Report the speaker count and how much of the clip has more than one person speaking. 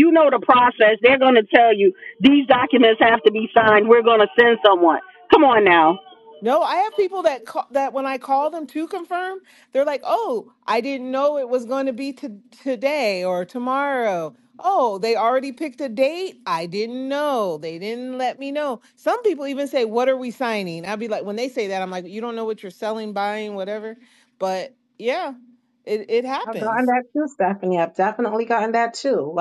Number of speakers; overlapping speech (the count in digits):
3, about 1%